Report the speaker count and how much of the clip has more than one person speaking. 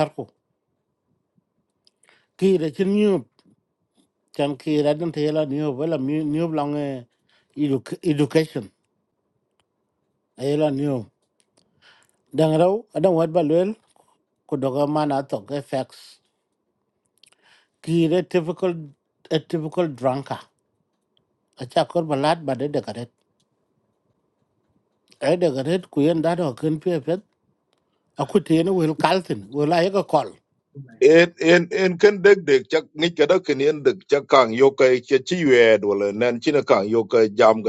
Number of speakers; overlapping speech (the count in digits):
2, no overlap